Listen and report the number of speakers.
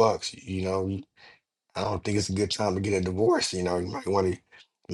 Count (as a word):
one